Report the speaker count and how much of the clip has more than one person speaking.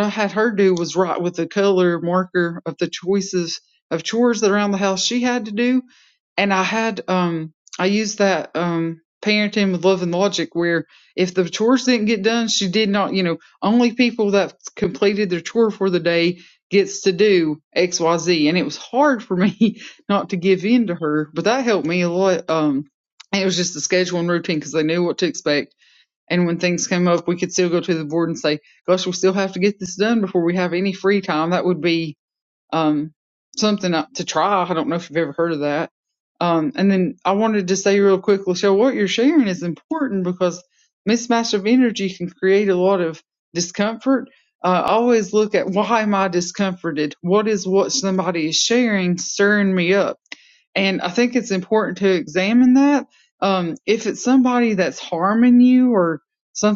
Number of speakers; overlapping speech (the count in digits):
1, no overlap